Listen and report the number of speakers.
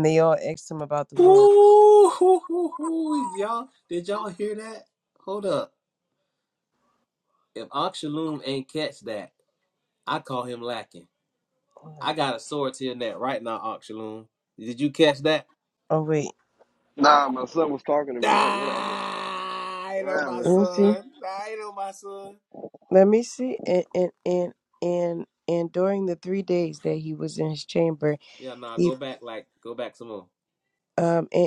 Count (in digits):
3